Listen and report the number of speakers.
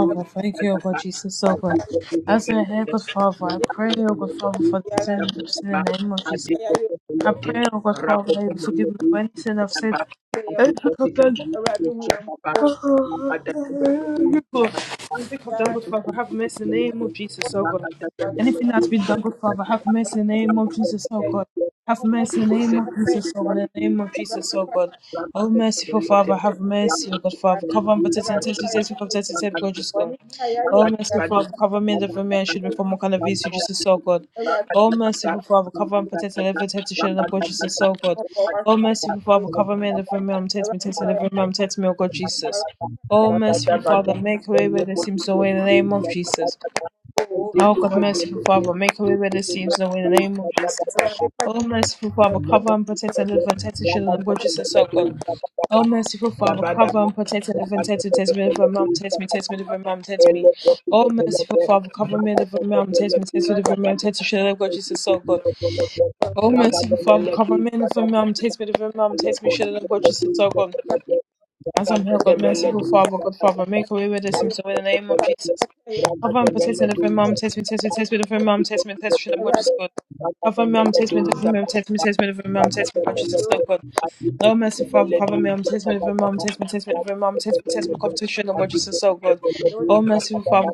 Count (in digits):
3